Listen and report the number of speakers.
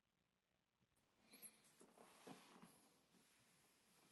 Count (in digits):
0